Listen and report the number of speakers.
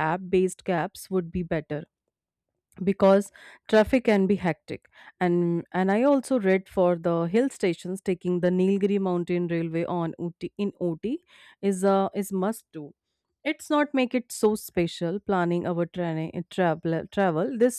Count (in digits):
1